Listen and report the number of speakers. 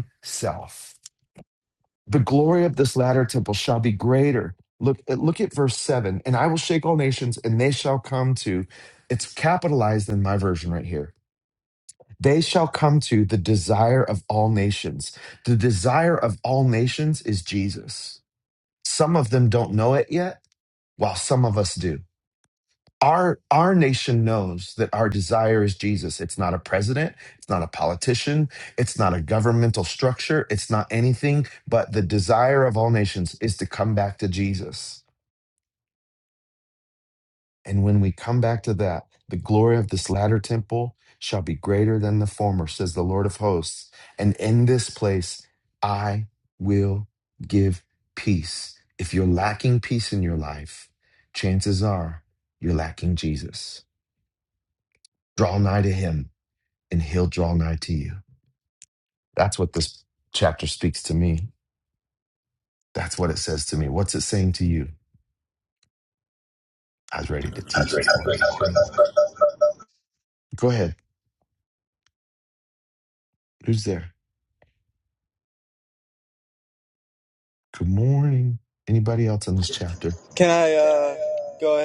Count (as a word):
two